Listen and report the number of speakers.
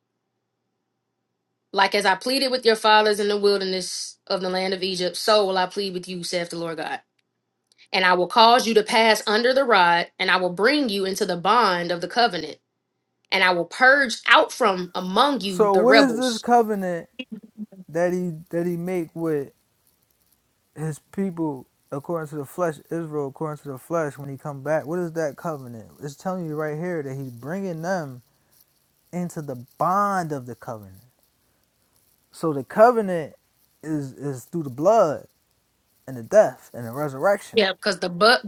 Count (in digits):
2